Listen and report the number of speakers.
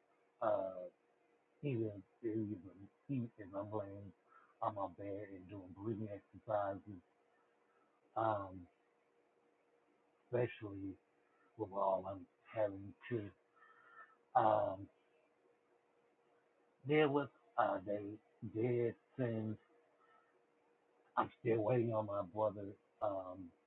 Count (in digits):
1